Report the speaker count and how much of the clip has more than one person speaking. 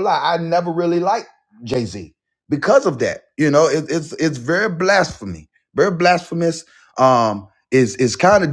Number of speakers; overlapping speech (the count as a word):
one, no overlap